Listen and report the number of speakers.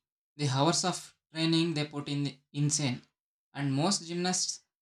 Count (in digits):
1